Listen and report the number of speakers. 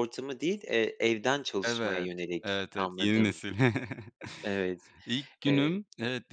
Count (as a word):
two